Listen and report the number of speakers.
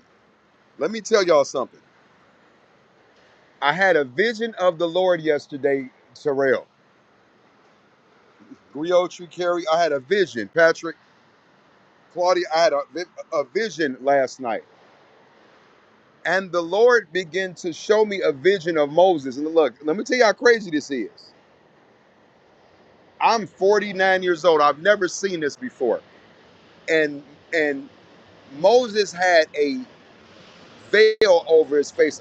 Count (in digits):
1